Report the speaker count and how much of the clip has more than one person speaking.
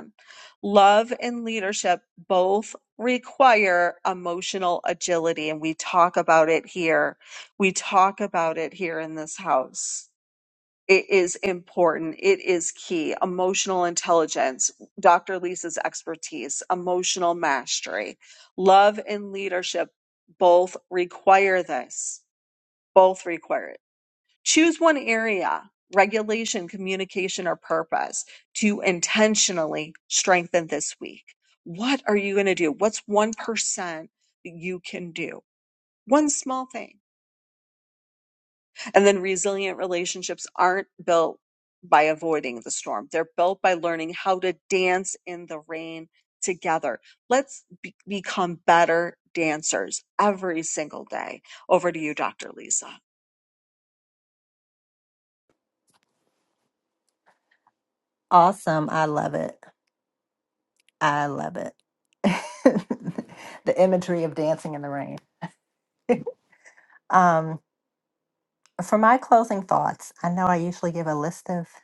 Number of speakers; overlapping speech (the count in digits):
2, no overlap